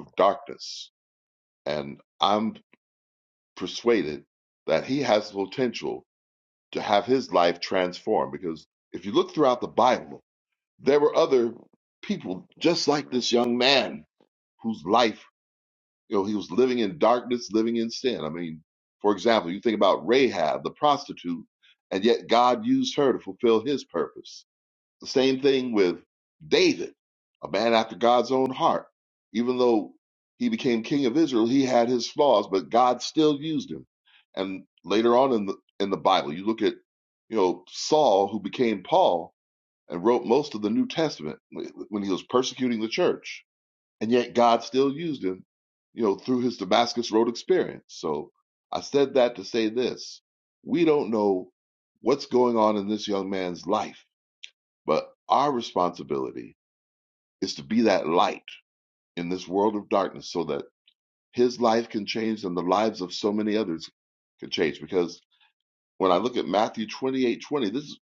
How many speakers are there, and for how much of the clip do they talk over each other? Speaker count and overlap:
1, no overlap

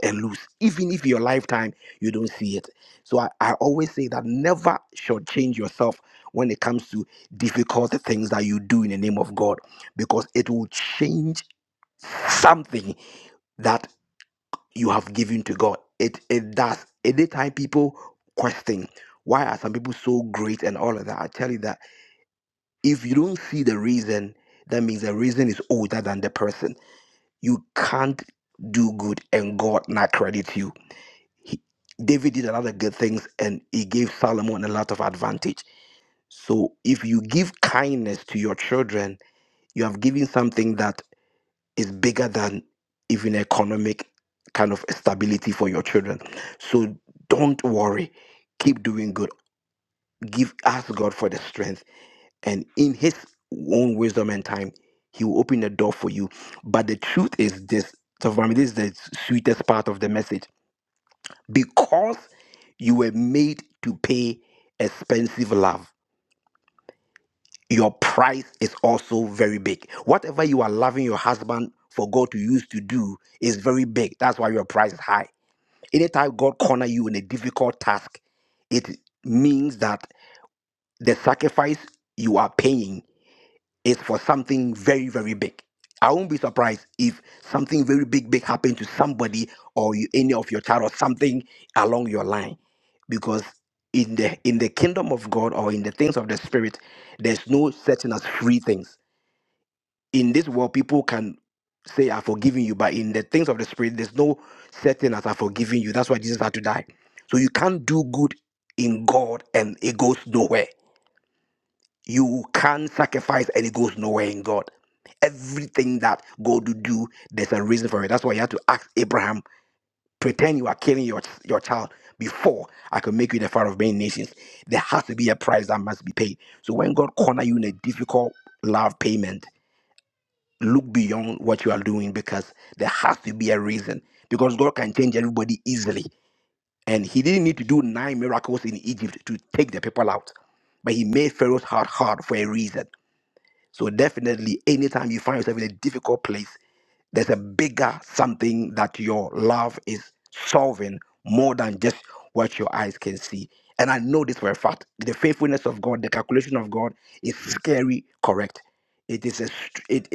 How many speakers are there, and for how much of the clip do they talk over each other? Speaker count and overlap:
1, no overlap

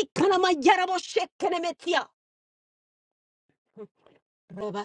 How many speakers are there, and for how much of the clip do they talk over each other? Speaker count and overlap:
1, no overlap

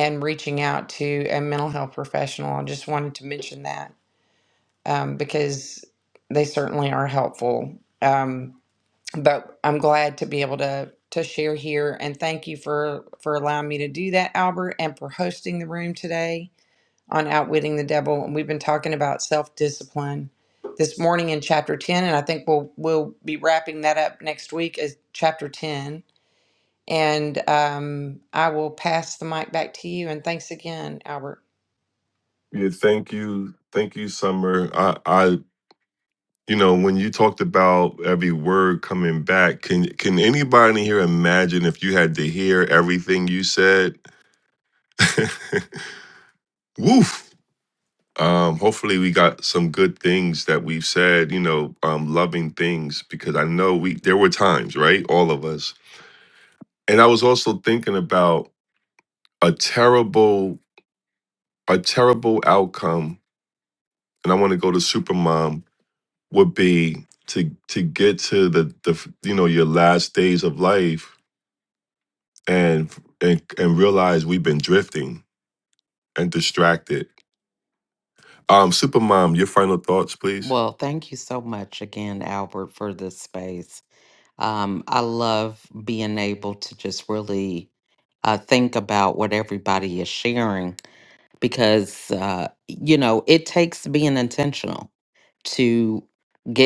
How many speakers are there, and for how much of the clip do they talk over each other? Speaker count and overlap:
3, under 1%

